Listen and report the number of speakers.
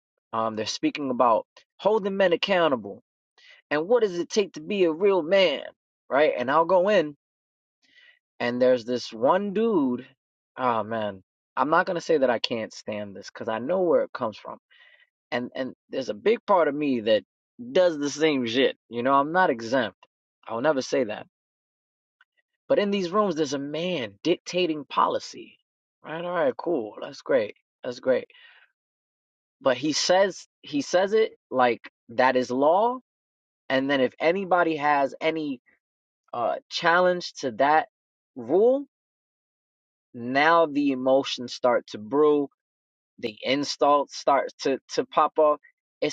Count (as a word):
one